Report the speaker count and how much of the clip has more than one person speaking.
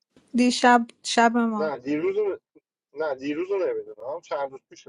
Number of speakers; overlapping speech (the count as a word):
two, about 2%